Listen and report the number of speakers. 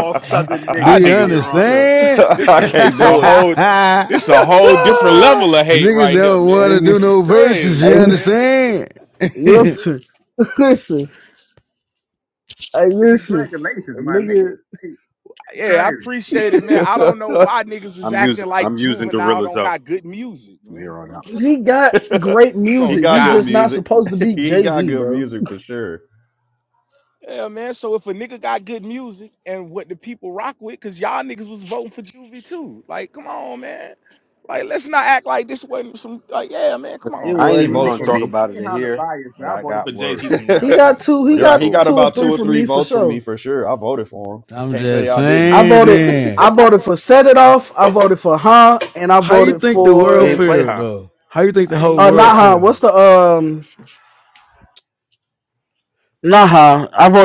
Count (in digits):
6